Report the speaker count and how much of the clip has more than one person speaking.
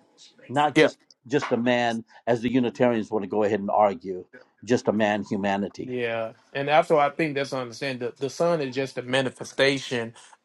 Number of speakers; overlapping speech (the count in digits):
2, about 2%